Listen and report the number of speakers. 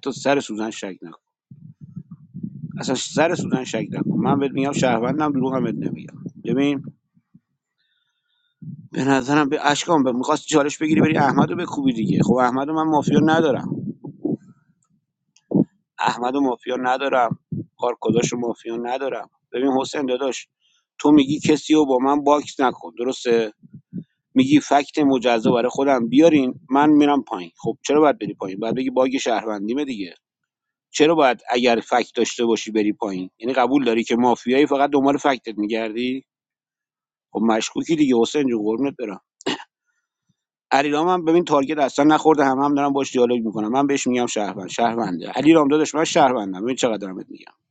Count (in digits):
1